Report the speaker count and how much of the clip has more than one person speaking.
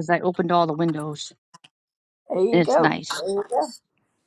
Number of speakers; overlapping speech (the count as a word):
two, about 16%